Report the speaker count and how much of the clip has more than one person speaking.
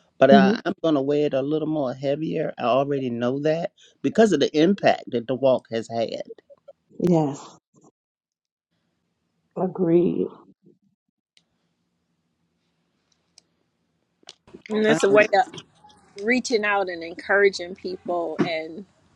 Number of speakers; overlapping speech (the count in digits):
3, about 2%